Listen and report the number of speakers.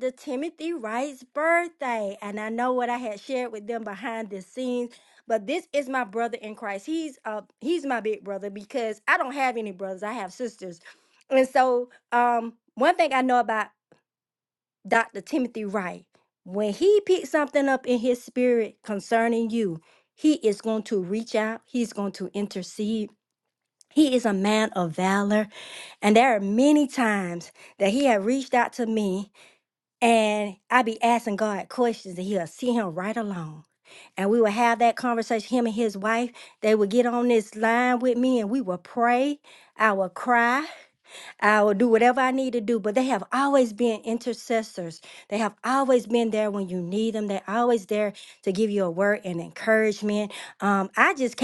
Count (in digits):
1